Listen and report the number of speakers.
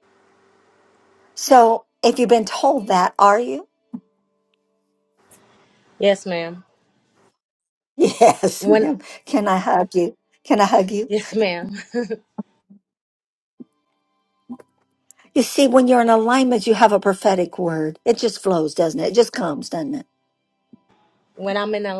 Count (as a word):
two